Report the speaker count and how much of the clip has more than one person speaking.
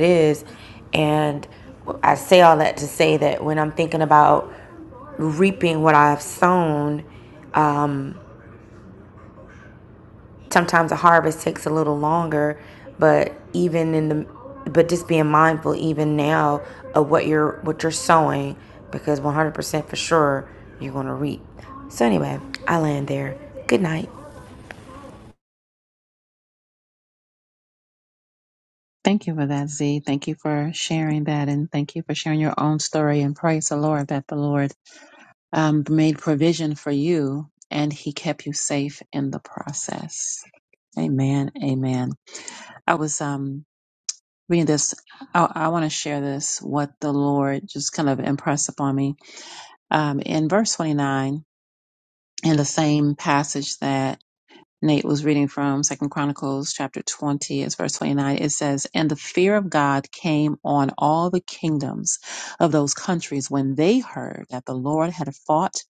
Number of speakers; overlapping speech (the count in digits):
2, no overlap